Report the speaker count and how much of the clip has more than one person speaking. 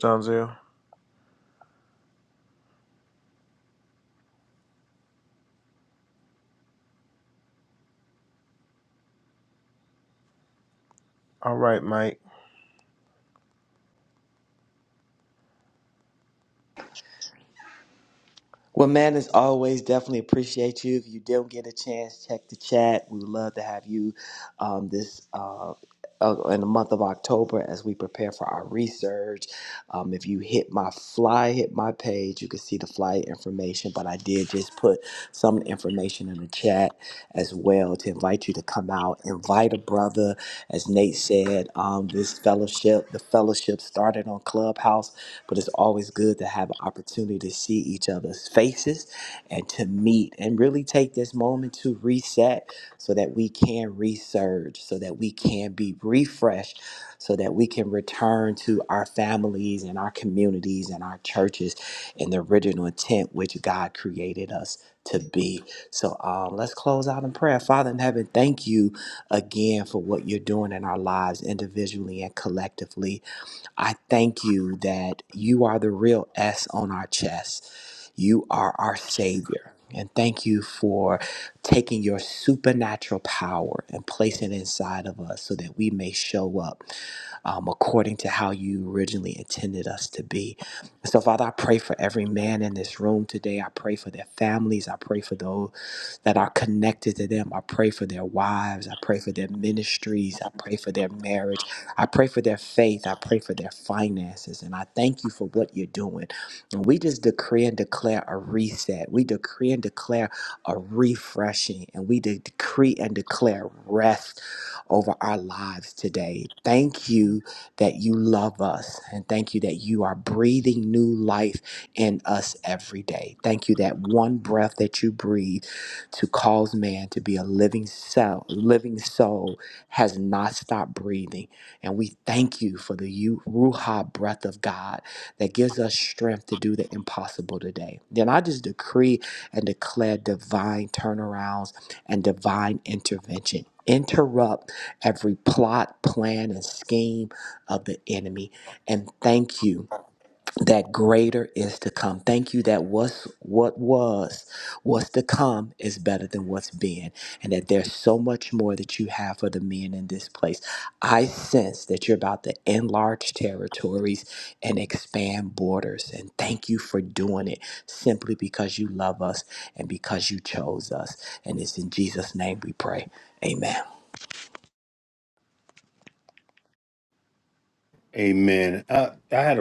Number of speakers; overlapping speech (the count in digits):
3, no overlap